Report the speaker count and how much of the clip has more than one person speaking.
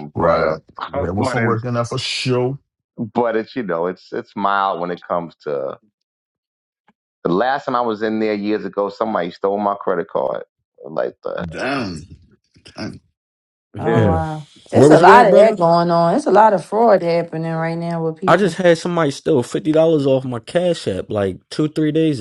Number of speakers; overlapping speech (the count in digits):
4, about 13%